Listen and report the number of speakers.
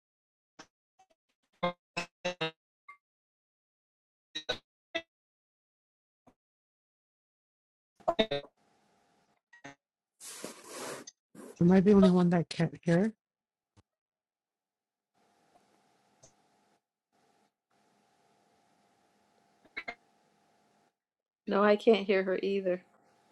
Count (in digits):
2